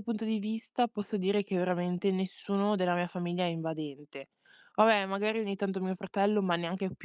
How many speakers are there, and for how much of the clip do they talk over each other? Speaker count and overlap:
1, no overlap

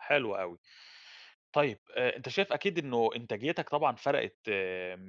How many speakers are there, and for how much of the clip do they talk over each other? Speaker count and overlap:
1, no overlap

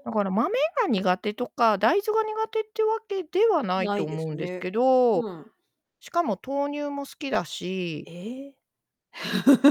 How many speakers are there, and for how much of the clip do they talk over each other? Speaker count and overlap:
2, about 10%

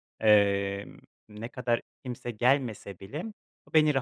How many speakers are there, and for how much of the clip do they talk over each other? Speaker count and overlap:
1, no overlap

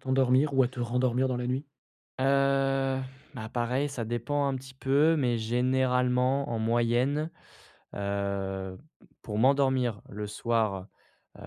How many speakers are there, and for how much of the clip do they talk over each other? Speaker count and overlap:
2, no overlap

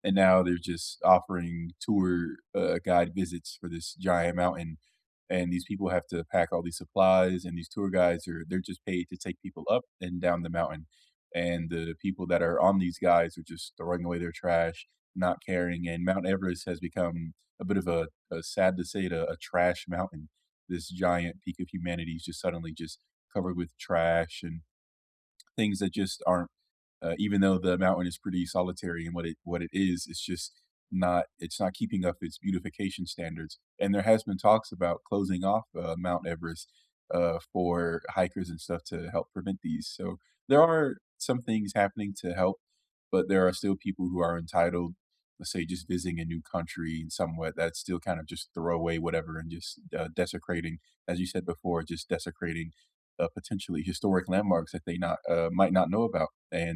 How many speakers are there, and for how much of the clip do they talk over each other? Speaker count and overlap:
1, no overlap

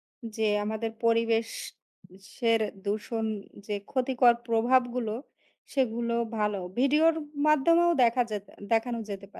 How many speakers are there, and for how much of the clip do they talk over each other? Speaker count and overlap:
1, no overlap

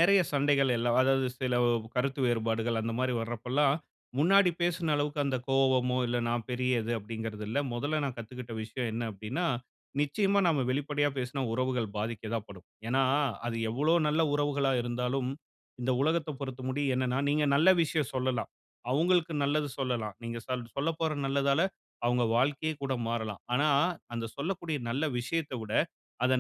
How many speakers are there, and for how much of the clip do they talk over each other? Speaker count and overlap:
1, no overlap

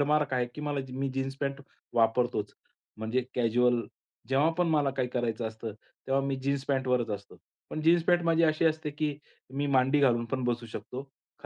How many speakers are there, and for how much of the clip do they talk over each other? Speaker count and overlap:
1, no overlap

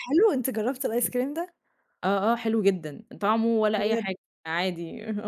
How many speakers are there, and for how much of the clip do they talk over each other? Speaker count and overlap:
2, about 6%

